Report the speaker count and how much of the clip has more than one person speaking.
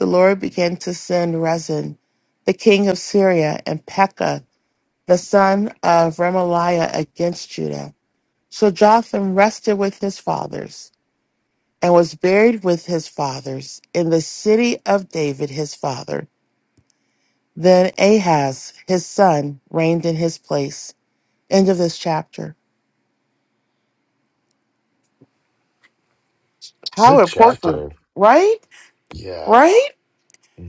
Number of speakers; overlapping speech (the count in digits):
2, about 3%